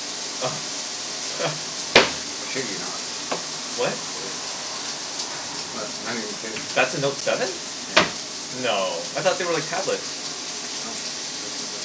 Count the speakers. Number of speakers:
two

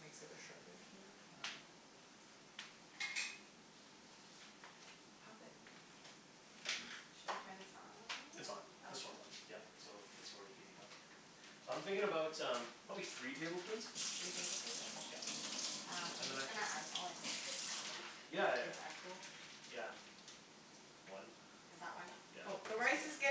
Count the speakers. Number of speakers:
three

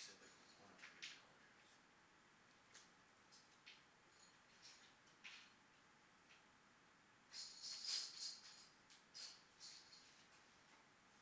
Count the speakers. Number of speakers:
one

